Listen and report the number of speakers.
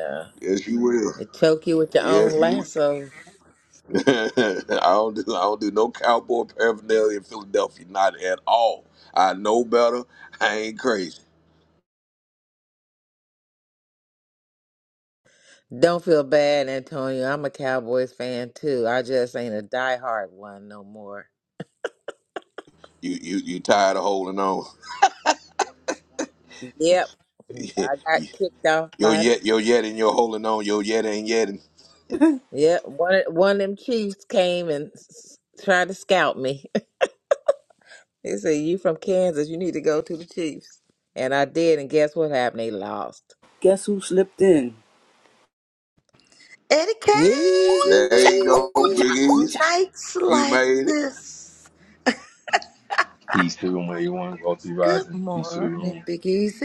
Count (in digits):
5